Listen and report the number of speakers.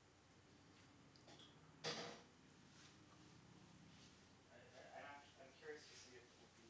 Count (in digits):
1